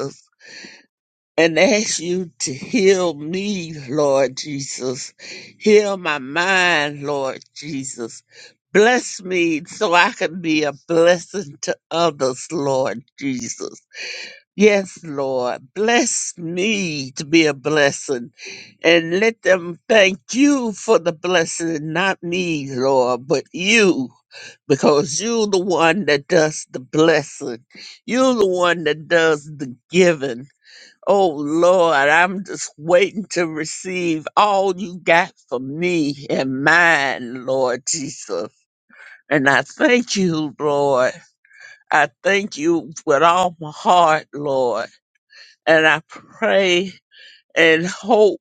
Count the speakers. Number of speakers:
1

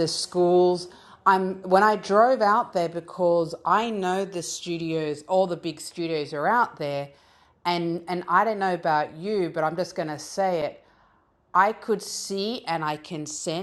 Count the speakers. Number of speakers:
1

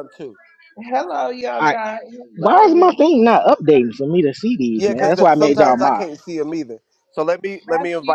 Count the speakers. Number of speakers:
3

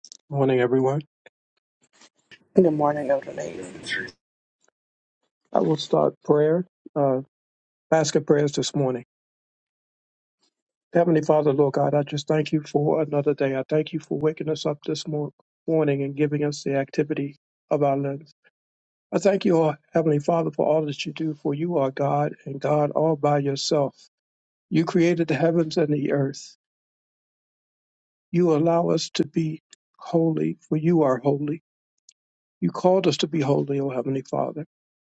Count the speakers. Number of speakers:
2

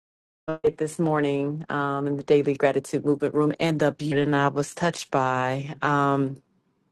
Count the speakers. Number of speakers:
1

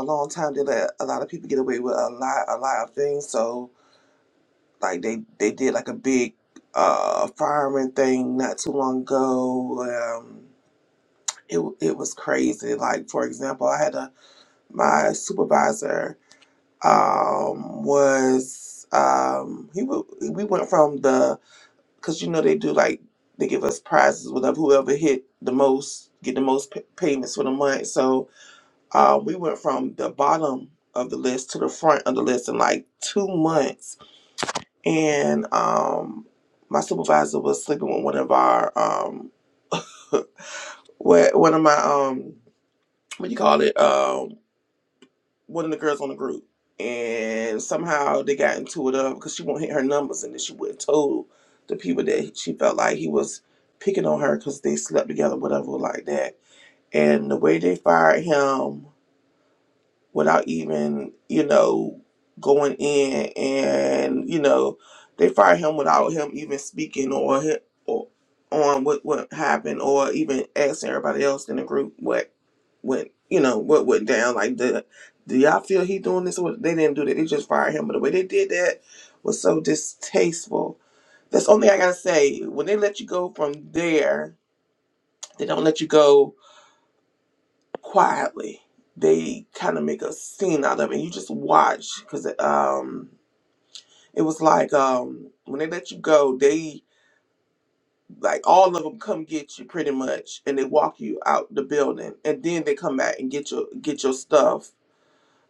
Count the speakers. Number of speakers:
1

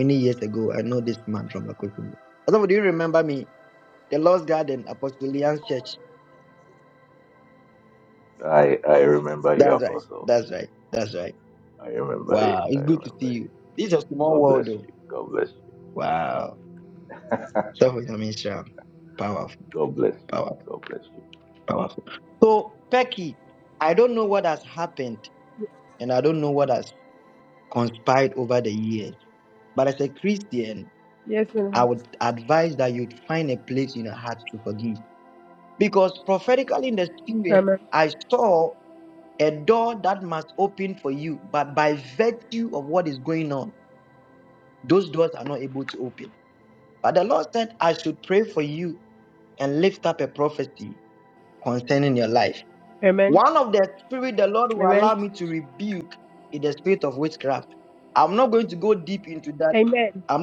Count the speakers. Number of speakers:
3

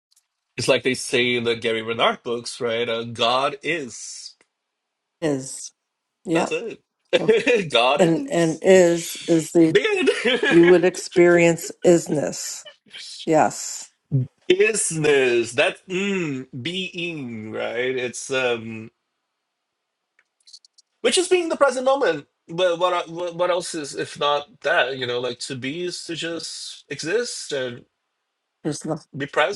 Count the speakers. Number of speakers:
2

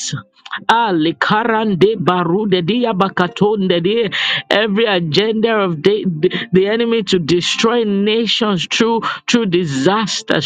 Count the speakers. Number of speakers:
1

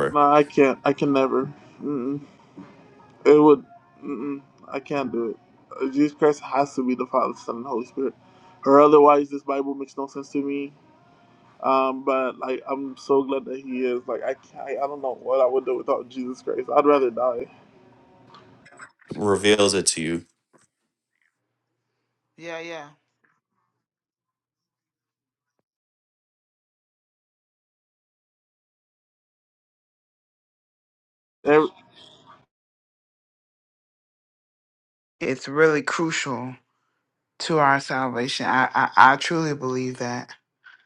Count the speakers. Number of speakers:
3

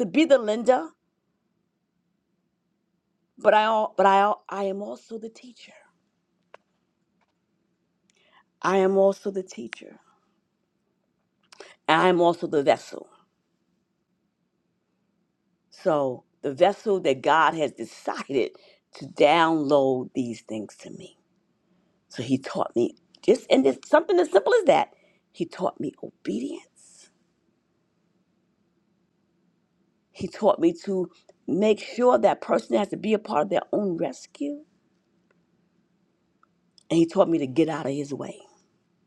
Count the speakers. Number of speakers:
1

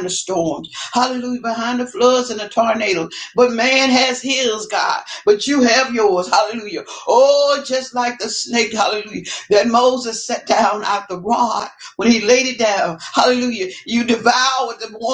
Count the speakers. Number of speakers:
1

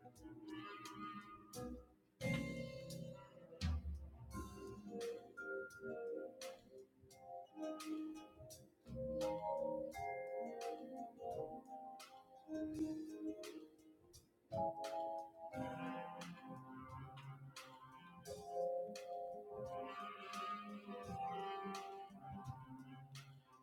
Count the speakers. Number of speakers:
0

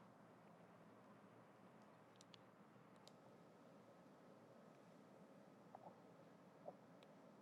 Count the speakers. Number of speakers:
0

